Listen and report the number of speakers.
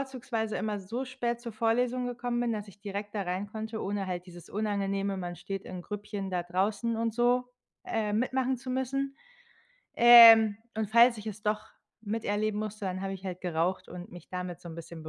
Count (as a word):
one